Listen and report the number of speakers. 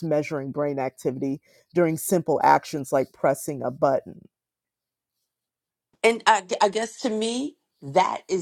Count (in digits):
2